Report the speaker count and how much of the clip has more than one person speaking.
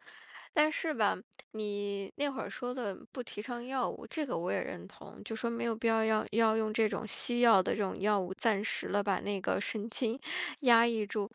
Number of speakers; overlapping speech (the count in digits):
1, no overlap